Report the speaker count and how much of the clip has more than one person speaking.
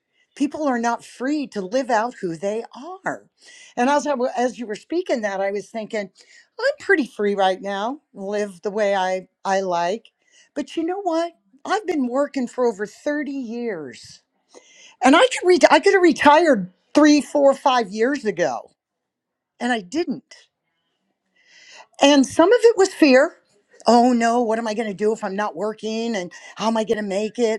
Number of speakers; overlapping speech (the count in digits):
1, no overlap